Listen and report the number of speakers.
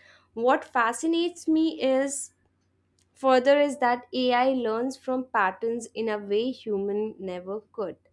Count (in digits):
1